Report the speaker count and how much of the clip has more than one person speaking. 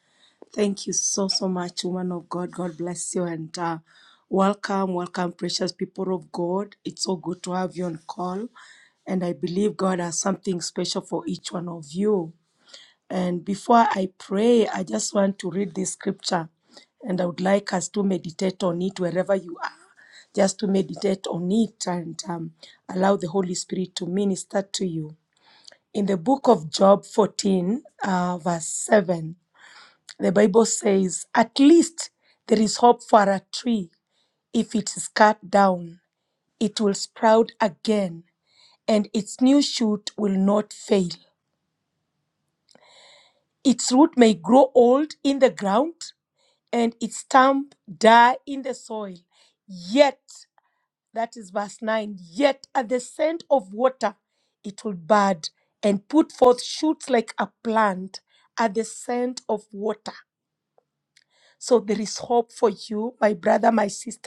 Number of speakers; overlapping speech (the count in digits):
1, no overlap